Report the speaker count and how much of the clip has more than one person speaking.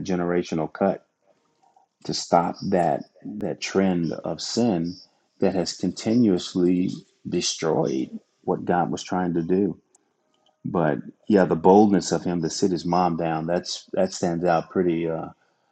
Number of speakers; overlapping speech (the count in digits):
1, no overlap